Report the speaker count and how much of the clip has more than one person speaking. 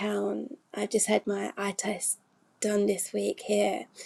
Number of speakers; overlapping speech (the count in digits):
1, no overlap